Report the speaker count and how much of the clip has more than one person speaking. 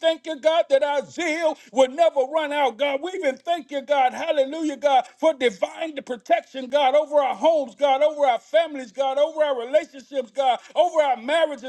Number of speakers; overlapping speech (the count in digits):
1, no overlap